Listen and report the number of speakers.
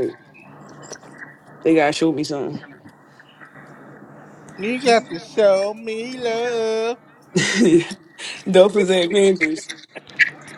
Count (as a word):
two